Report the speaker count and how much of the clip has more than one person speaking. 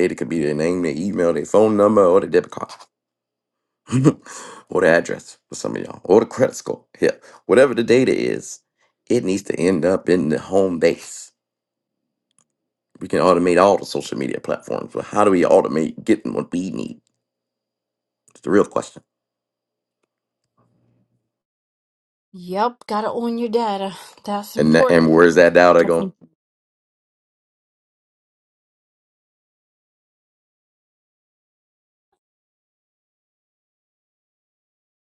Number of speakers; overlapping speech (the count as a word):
two, about 2%